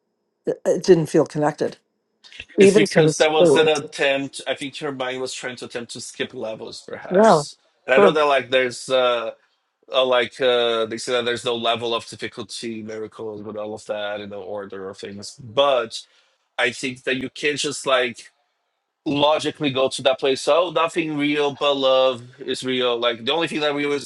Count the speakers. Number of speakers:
2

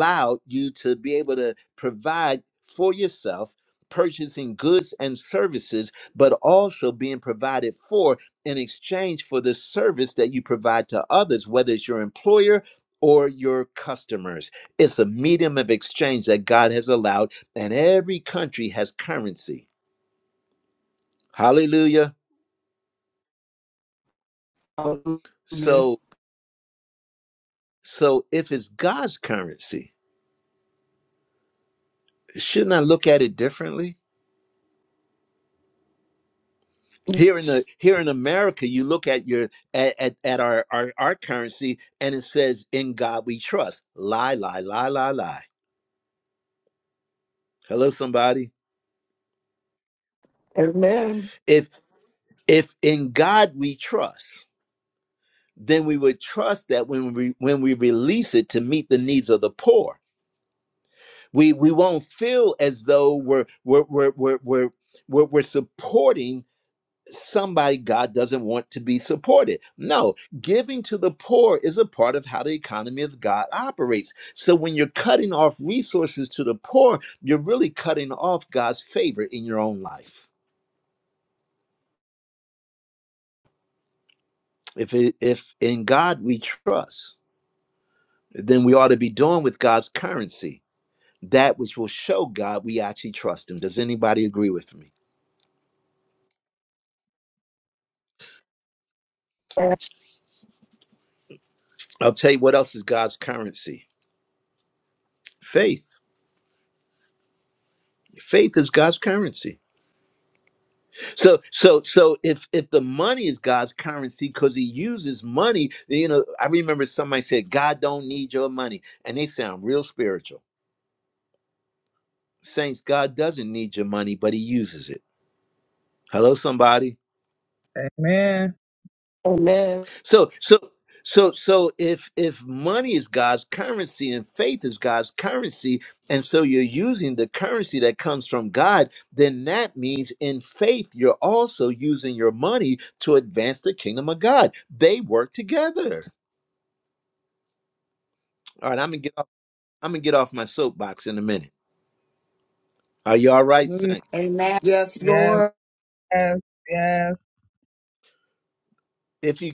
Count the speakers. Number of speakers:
4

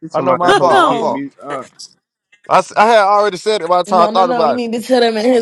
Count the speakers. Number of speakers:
3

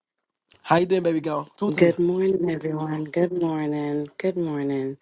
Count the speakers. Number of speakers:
2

